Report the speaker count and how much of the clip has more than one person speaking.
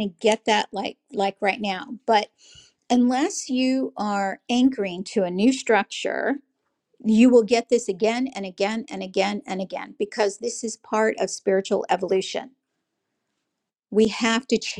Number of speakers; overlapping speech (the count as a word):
one, no overlap